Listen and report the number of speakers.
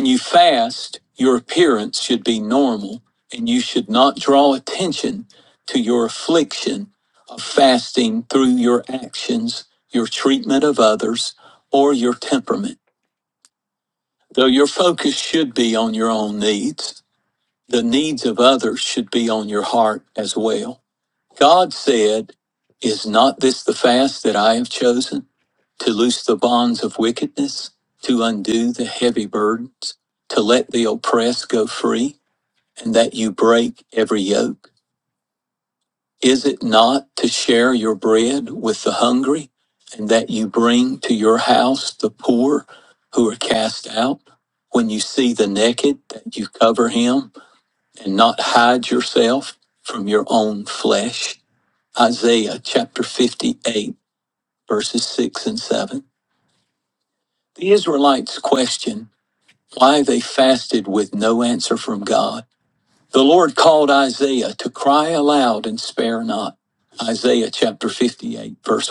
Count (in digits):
1